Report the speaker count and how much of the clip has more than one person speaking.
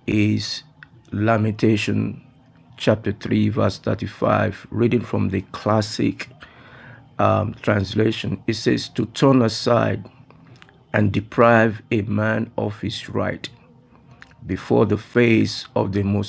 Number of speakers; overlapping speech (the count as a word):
one, no overlap